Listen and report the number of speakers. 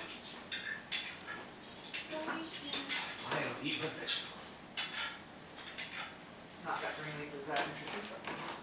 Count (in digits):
2